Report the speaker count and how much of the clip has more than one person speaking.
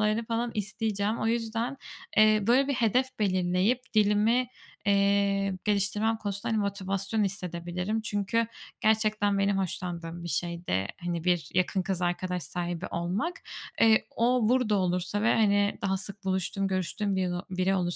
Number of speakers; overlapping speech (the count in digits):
1, no overlap